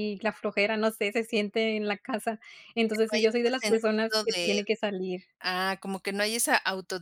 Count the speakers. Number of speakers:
2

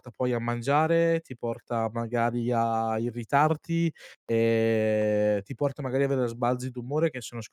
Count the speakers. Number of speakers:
1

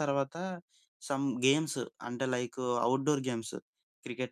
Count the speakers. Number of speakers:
1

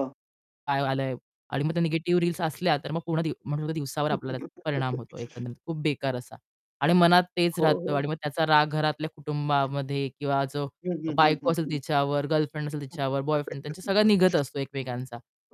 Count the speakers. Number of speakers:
2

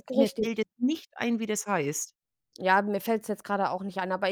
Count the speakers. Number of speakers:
2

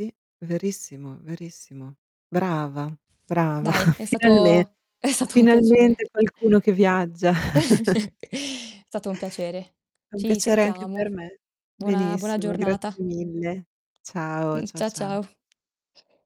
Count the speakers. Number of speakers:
2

